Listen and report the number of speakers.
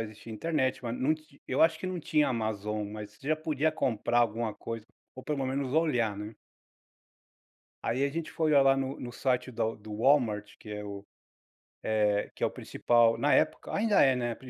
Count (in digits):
1